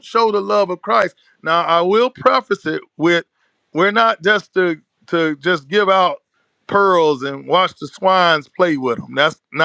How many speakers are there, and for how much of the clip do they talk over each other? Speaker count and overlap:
one, no overlap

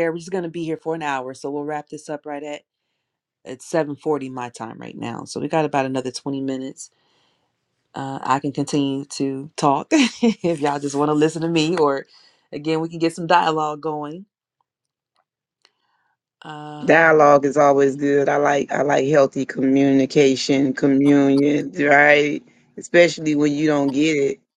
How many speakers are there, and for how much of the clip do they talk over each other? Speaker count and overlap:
two, about 1%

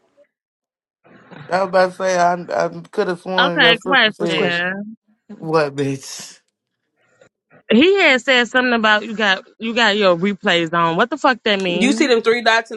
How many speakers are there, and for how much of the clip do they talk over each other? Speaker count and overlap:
three, about 13%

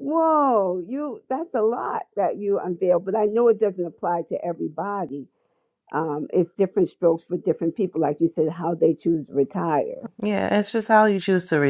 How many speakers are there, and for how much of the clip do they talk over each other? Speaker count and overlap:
two, no overlap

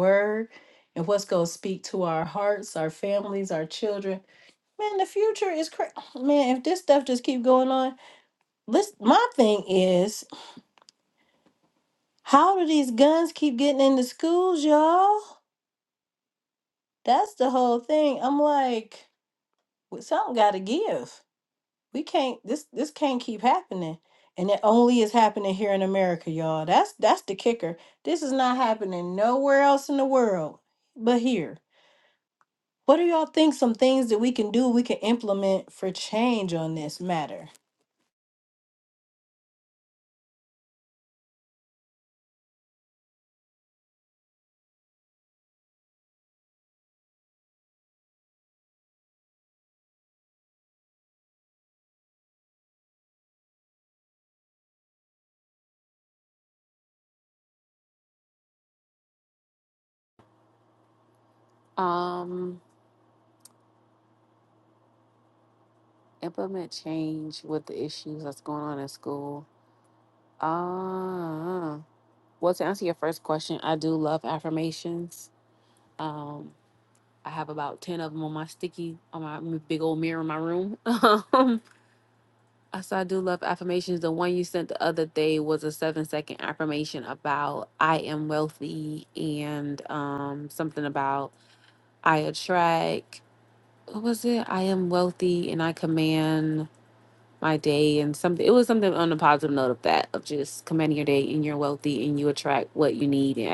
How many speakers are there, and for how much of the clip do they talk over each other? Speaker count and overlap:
two, no overlap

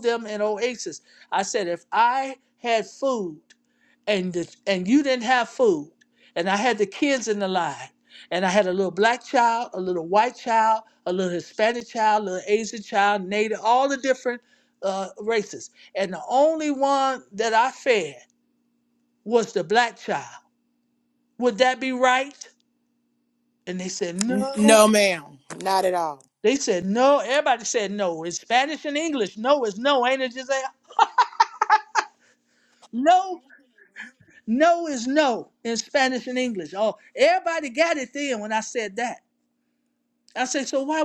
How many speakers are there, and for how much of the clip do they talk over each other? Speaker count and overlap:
two, about 1%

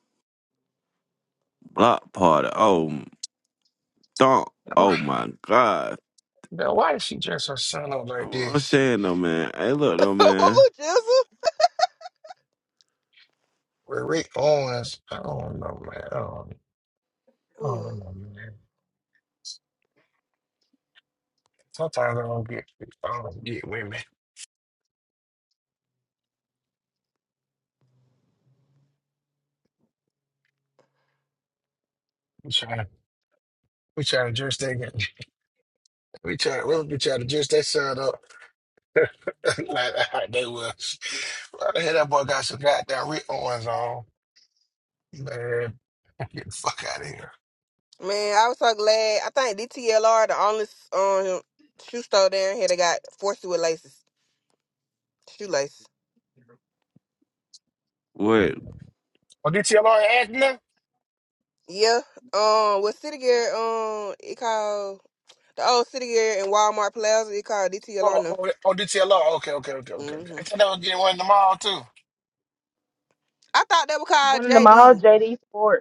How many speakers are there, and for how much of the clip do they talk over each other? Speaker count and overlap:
four, about 4%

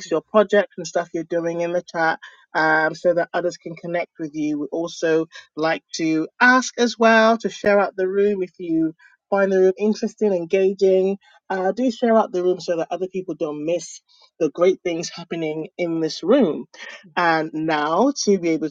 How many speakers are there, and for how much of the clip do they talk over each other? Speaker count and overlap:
one, no overlap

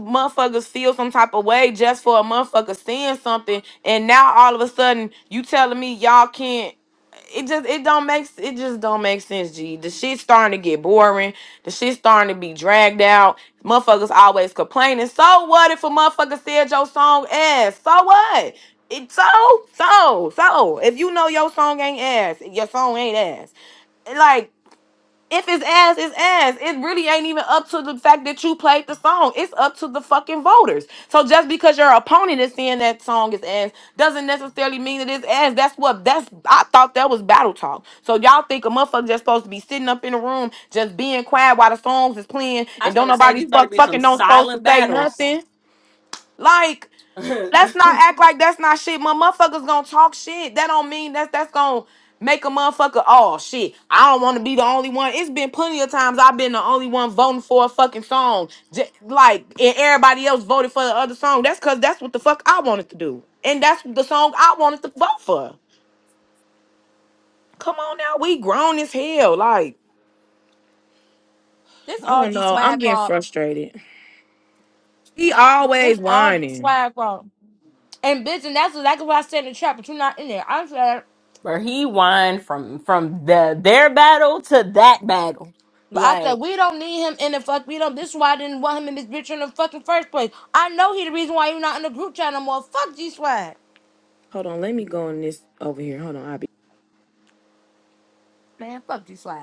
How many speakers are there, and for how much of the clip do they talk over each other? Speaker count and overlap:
three, about 5%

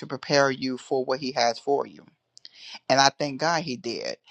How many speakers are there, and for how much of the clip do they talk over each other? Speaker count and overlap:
one, no overlap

